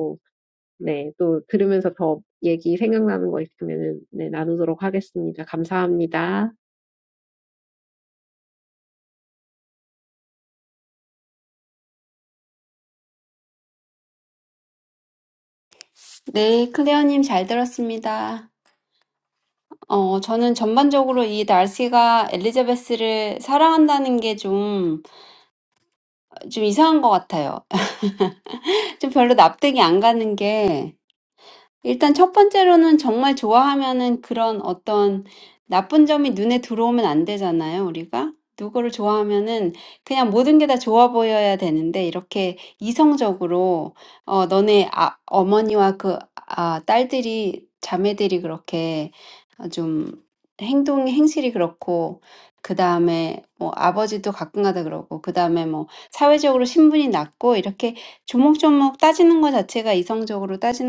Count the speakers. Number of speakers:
two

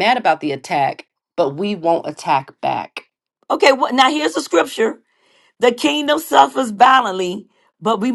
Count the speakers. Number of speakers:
two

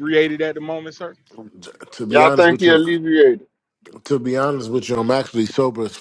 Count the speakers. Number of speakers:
three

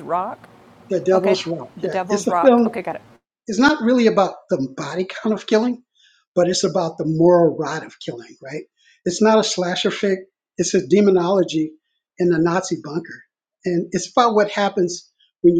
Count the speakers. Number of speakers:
two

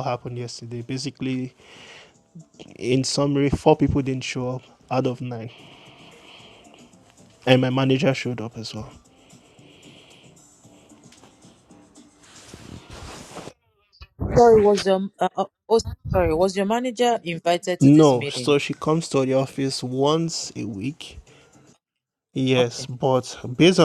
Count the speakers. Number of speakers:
two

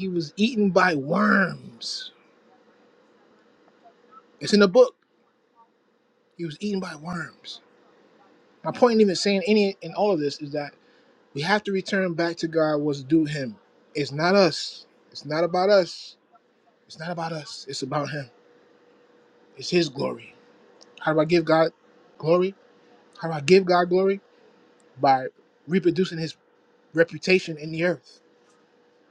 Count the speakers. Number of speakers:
one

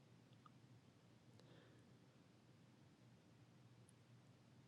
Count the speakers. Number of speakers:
zero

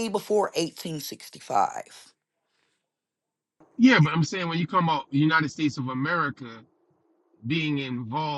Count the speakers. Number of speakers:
two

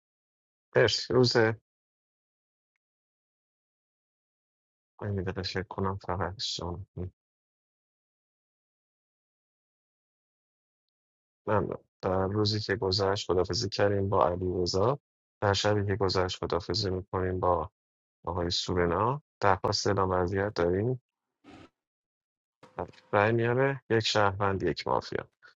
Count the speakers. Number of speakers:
one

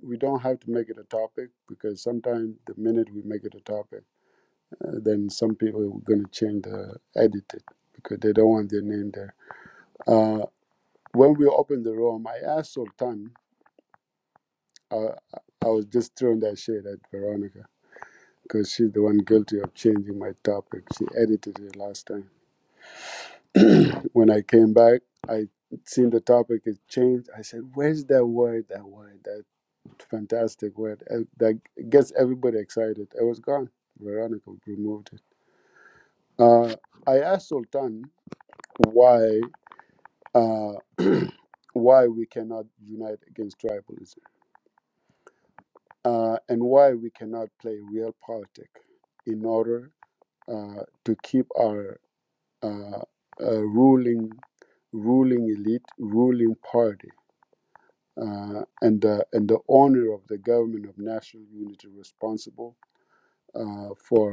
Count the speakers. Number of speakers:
one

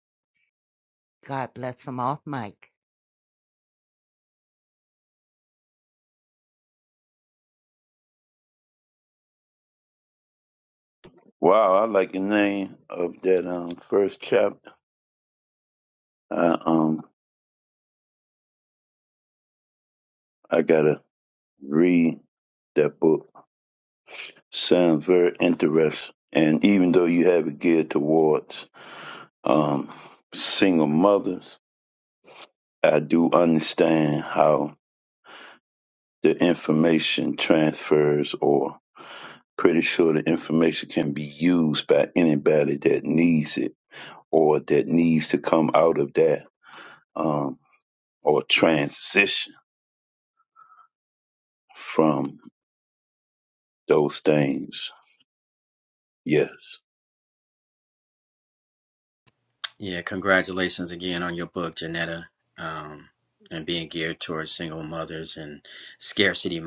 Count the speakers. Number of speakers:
three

